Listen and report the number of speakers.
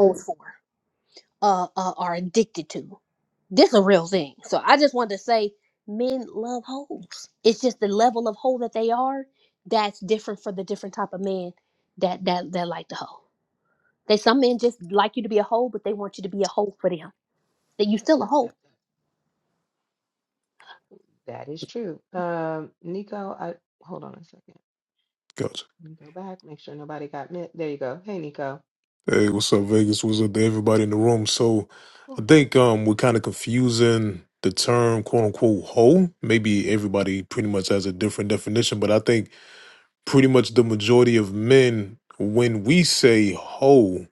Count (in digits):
3